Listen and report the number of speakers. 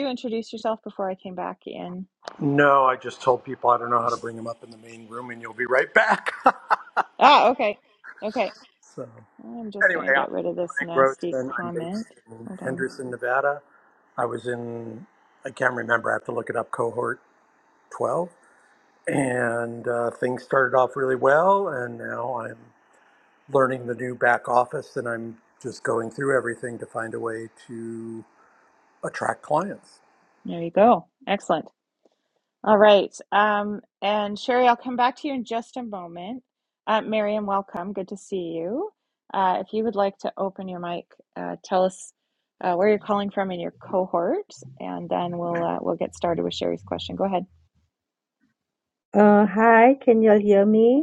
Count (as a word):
three